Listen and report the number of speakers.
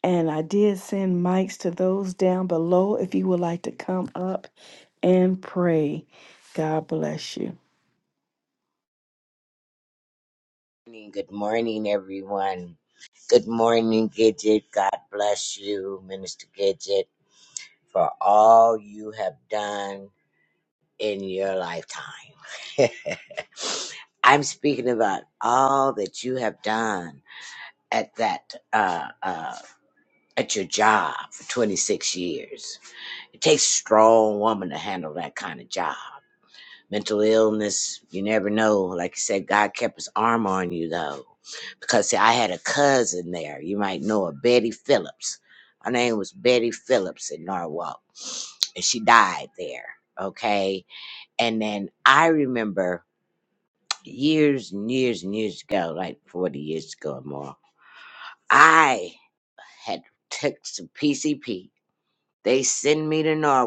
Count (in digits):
2